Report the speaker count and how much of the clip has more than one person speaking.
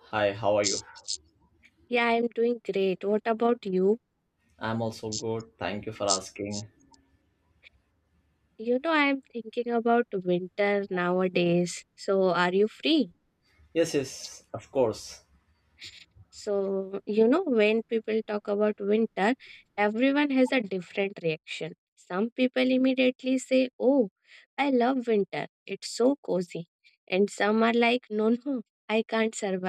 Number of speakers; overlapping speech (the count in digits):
2, no overlap